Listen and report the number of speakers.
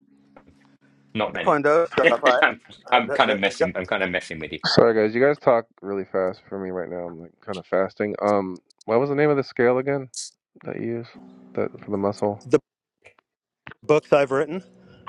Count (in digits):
3